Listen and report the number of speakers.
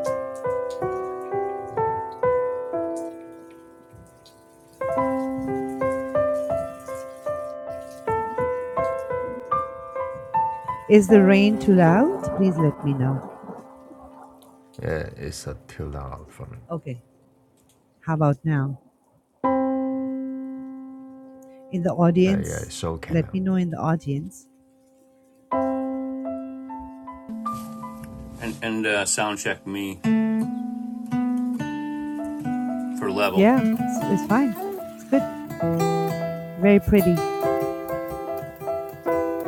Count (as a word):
three